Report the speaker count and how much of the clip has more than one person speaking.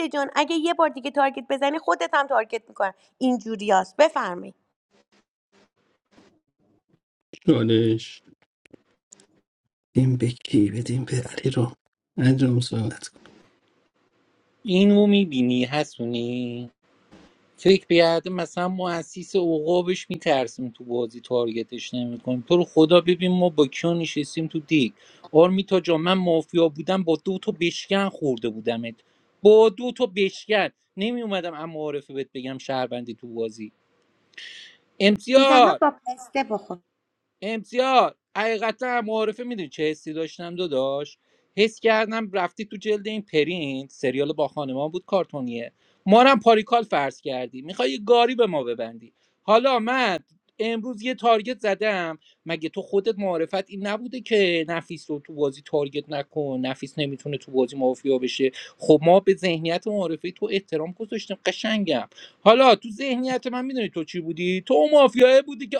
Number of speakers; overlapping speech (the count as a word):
three, about 1%